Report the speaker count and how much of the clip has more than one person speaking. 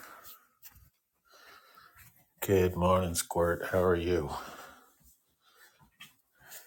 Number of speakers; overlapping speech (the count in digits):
1, no overlap